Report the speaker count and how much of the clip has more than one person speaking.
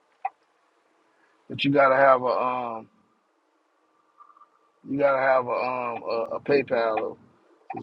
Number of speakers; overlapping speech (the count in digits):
1, no overlap